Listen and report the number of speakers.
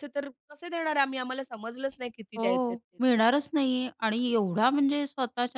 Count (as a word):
two